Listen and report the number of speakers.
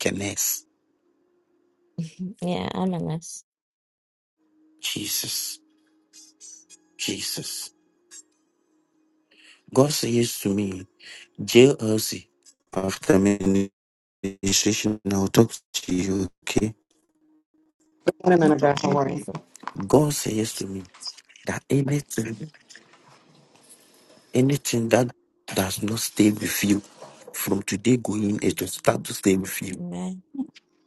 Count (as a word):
three